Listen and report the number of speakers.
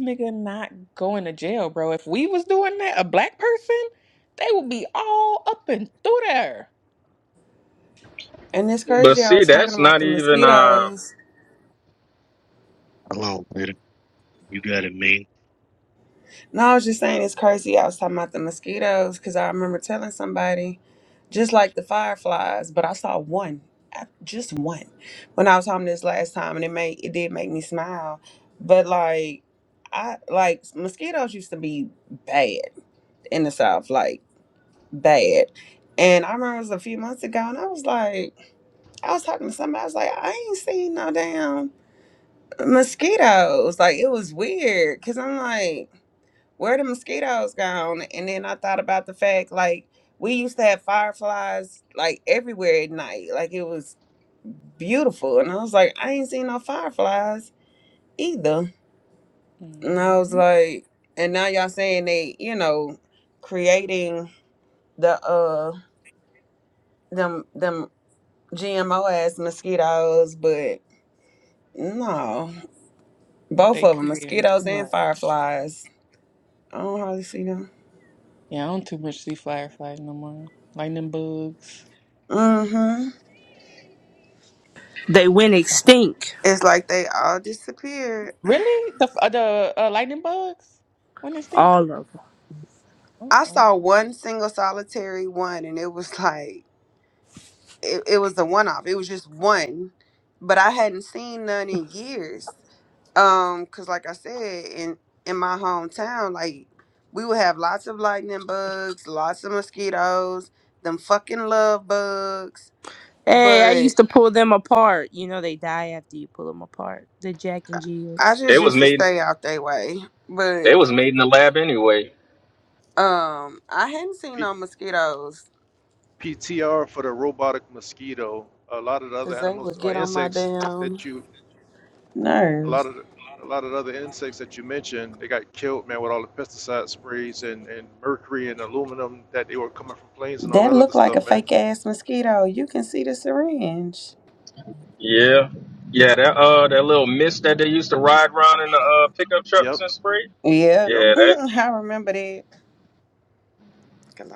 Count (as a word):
six